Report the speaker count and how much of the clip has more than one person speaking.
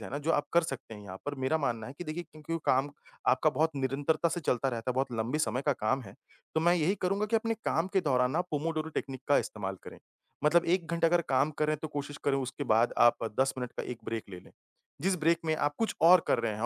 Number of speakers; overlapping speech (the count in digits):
1, no overlap